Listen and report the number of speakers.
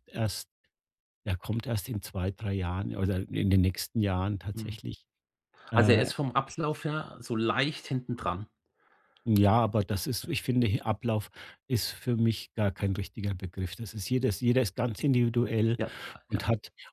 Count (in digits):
2